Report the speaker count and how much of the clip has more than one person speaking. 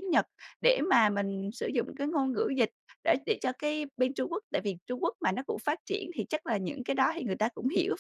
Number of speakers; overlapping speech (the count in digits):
1, no overlap